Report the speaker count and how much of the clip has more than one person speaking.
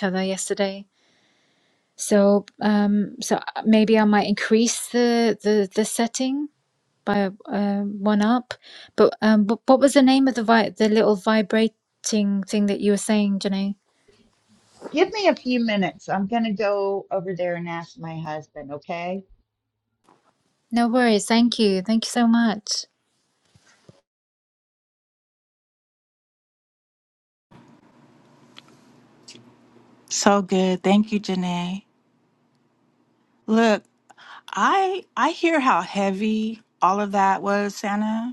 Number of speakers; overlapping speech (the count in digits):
3, no overlap